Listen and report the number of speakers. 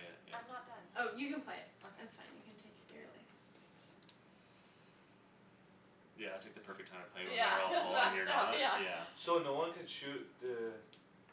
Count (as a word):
four